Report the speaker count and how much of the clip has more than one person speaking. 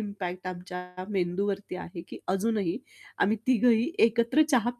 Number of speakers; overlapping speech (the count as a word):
one, no overlap